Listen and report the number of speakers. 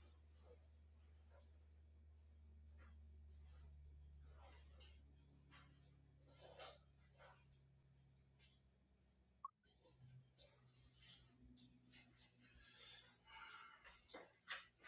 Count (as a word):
zero